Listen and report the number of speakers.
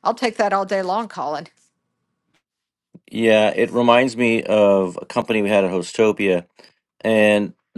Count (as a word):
two